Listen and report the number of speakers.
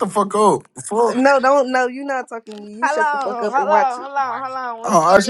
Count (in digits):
3